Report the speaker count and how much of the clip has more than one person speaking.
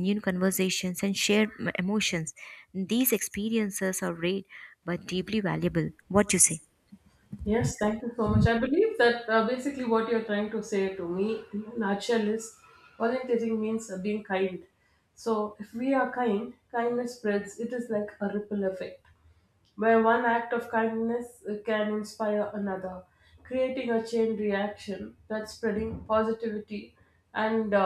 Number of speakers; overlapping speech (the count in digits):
2, no overlap